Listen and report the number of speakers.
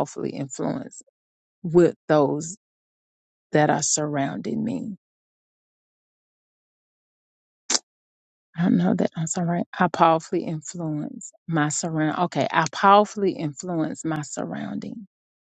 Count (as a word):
one